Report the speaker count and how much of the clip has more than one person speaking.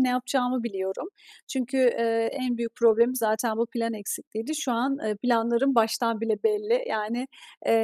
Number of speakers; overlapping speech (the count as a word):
one, no overlap